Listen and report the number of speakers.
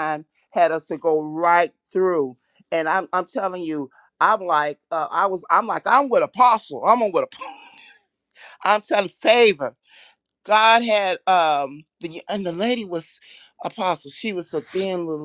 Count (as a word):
one